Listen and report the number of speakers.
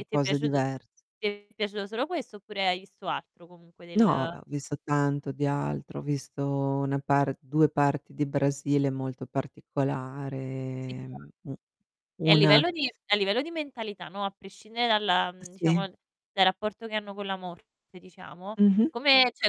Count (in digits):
2